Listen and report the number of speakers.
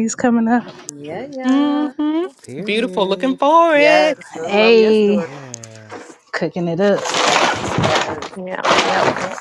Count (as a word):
four